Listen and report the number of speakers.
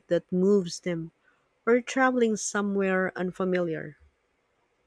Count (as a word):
one